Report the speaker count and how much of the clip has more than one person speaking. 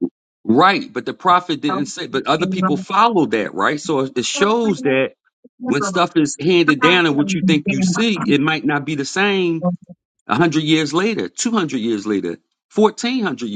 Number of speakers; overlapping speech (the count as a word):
one, no overlap